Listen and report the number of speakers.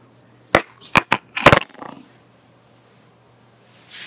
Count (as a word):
zero